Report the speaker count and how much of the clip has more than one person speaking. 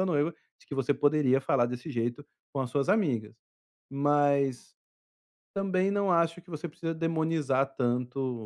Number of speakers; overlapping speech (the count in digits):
1, no overlap